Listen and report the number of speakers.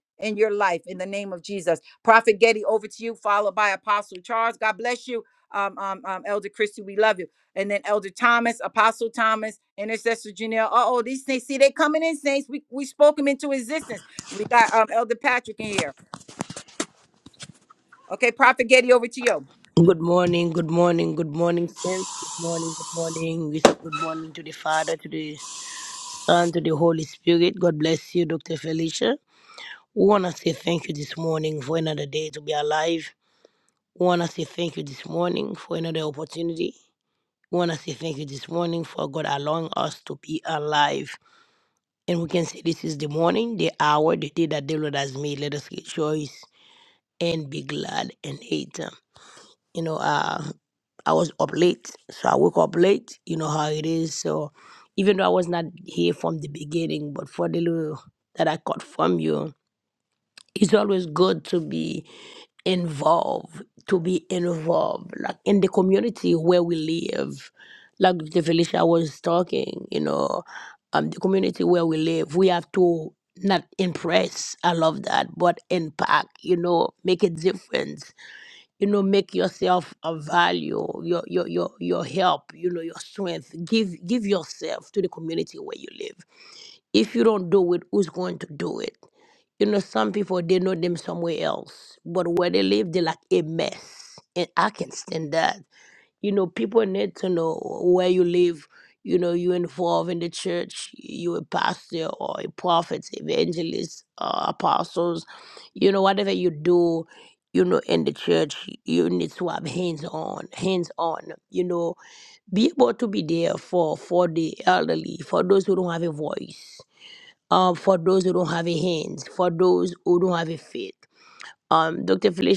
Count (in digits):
2